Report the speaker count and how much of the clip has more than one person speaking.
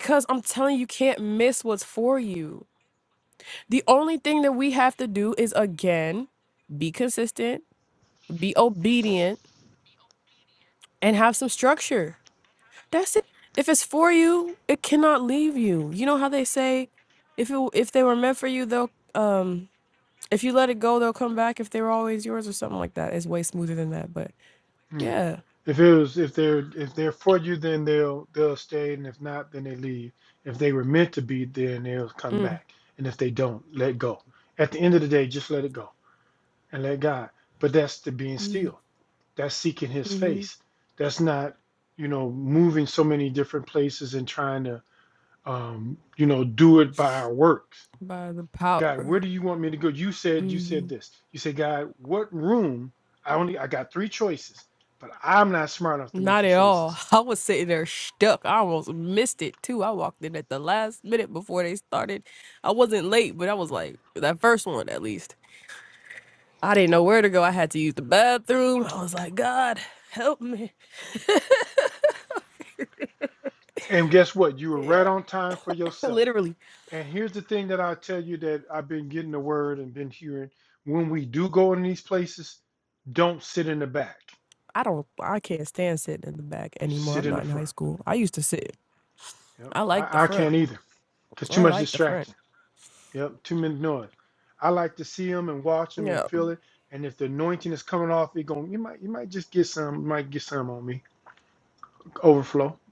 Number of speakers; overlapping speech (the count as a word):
two, about 5%